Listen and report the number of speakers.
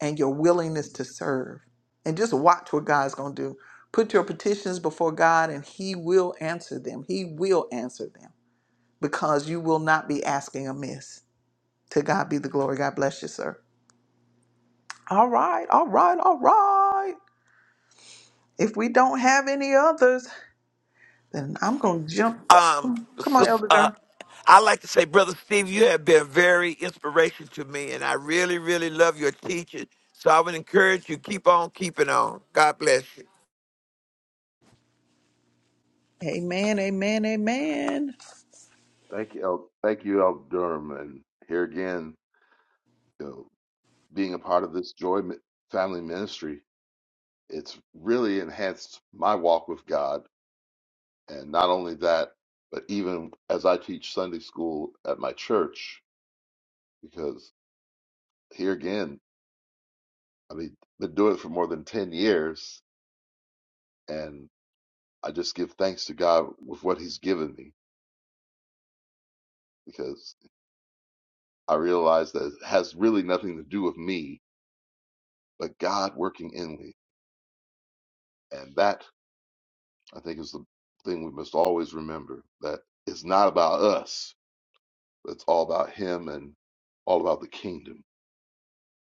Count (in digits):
3